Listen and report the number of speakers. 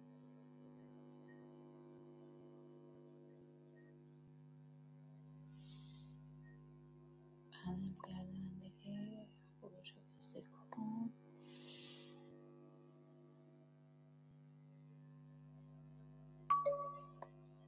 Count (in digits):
0